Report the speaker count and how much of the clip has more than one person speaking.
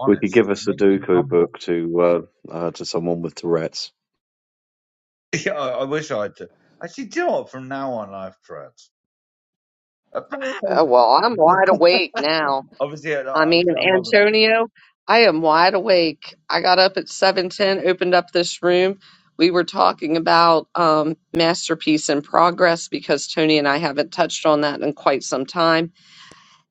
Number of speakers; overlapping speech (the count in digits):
3, about 8%